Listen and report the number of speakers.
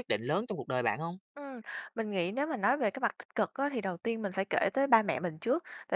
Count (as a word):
two